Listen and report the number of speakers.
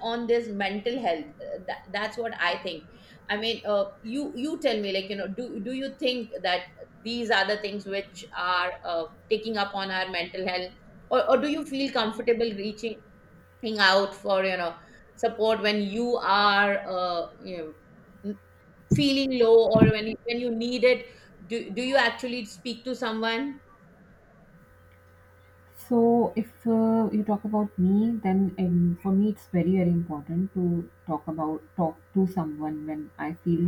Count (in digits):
2